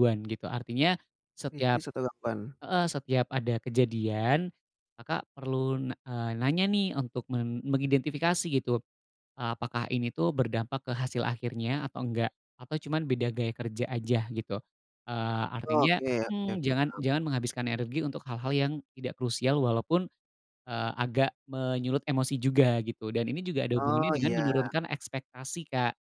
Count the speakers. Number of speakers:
2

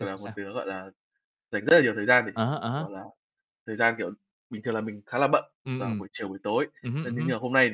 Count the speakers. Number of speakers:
2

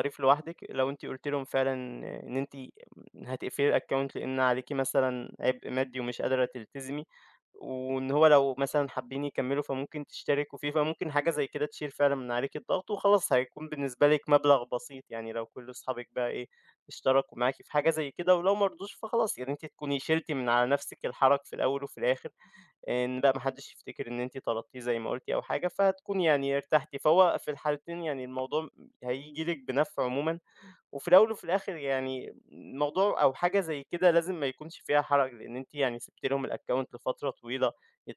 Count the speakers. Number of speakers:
1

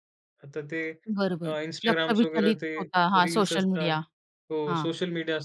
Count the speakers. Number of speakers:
2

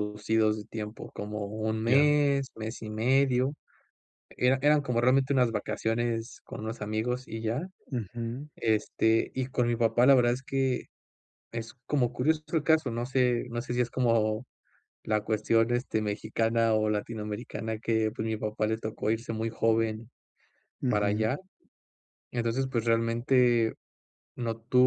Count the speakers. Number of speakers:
2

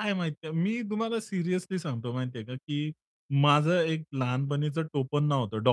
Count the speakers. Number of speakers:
1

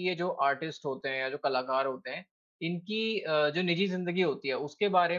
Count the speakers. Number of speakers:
1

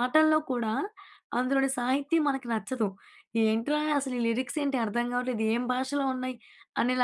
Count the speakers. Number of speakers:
1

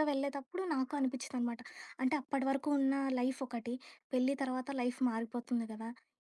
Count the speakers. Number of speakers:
1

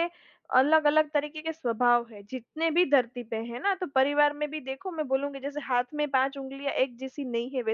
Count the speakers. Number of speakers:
1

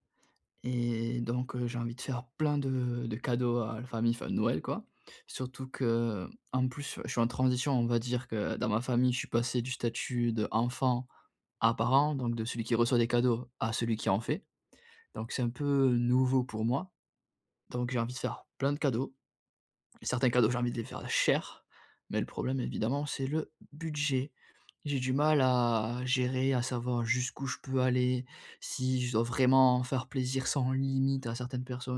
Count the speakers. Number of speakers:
1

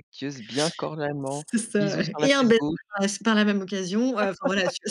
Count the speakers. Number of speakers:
2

